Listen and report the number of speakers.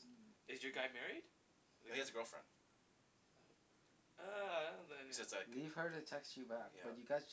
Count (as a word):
three